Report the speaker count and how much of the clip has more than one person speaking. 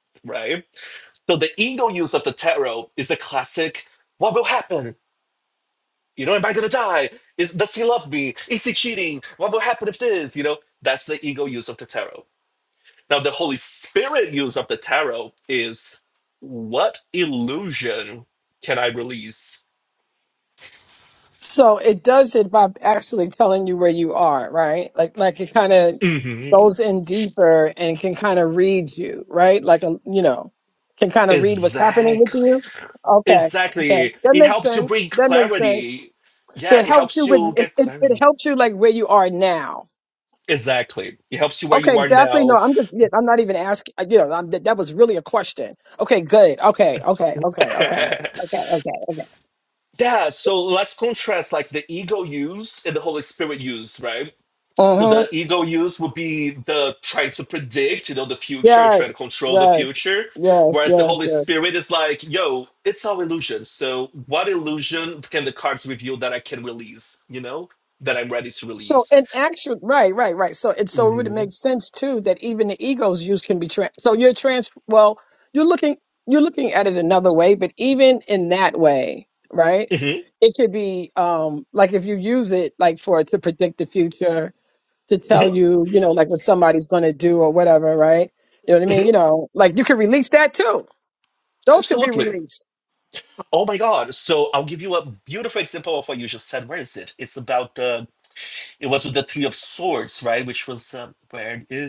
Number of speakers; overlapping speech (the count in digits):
2, about 10%